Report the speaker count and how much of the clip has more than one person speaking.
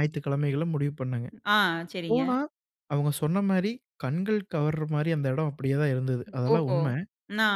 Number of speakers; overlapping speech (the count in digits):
2, about 10%